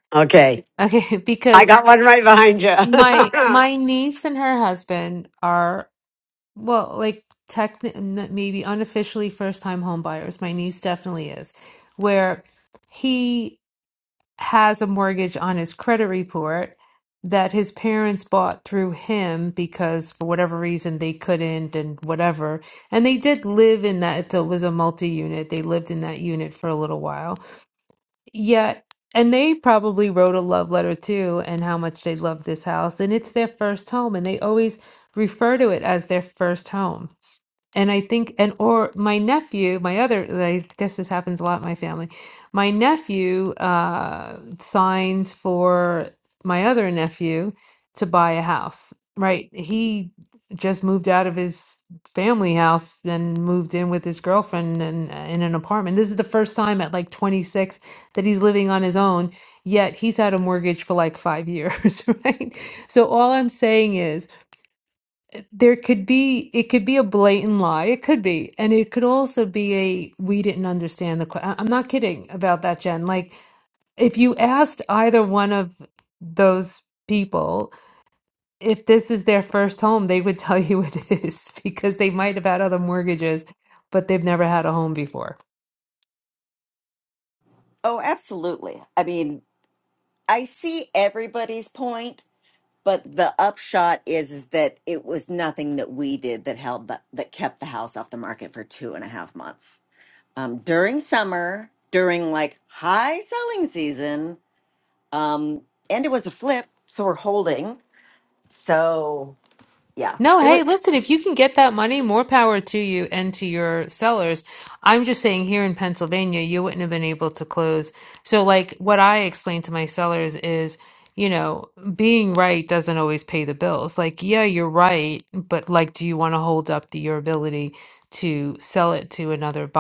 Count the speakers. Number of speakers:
3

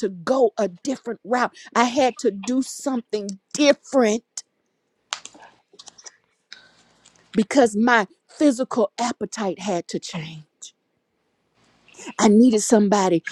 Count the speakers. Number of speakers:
1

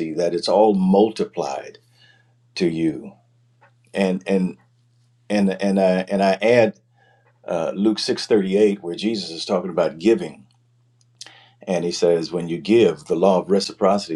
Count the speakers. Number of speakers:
1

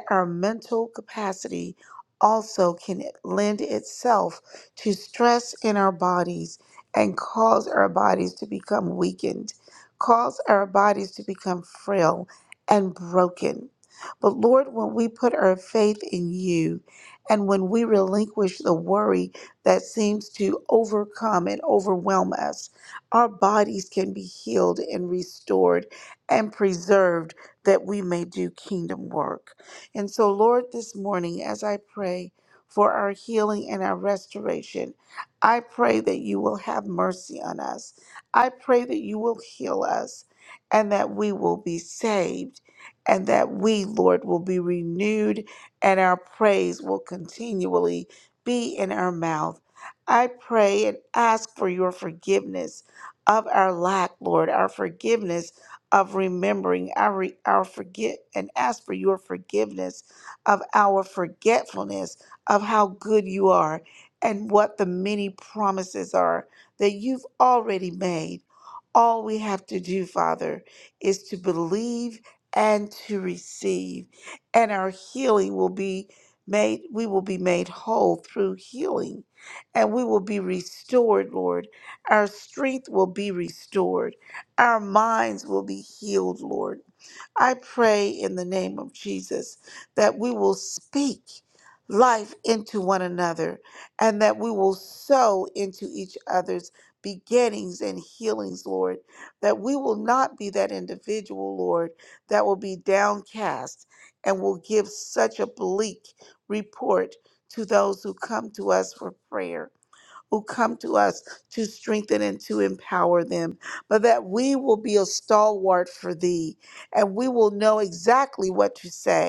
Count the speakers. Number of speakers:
1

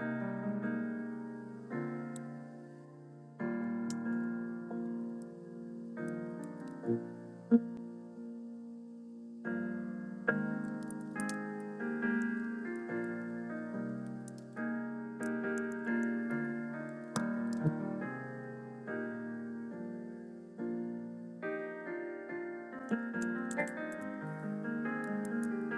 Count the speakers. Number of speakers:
0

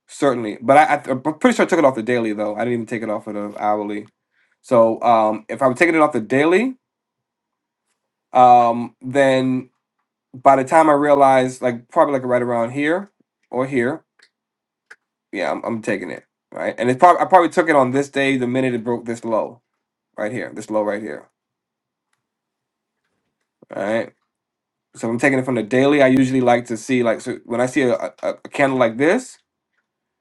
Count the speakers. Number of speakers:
1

